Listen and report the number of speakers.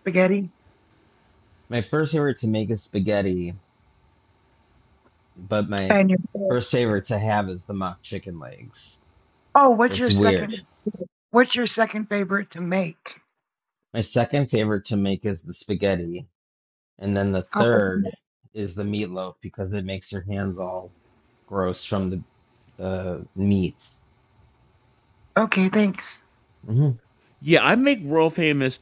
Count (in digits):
3